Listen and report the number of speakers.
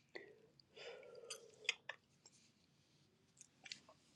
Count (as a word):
zero